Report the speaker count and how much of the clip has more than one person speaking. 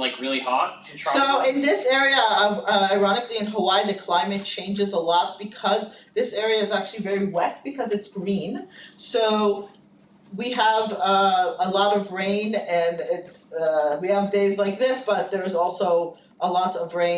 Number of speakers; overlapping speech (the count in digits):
2, about 4%